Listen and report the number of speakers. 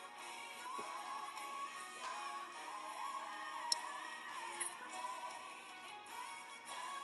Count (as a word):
zero